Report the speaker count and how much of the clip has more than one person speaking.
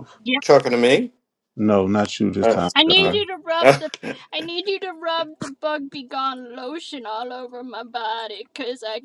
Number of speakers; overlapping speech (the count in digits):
3, about 11%